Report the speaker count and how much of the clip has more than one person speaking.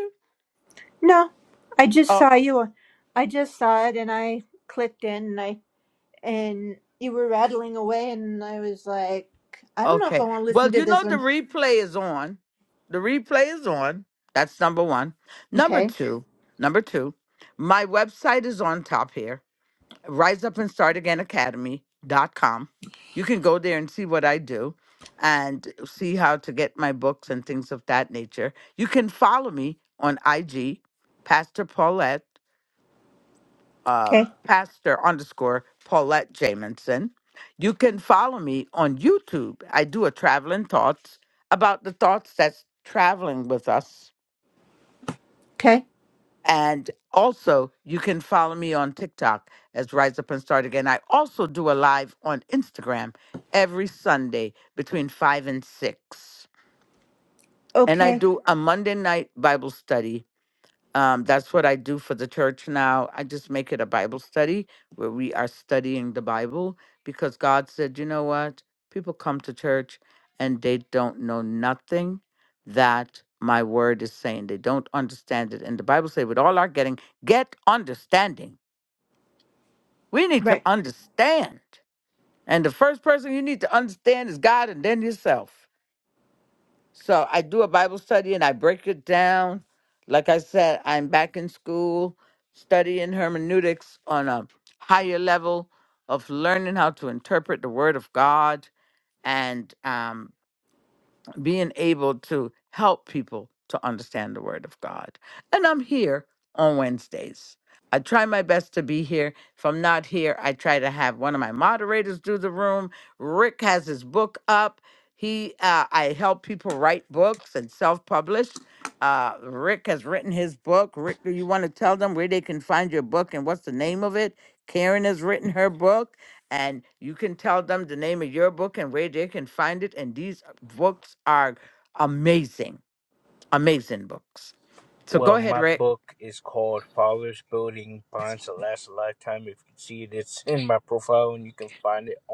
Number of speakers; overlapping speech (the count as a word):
three, about 2%